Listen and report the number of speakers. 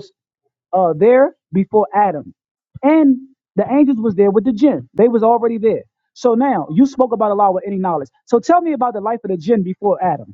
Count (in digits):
1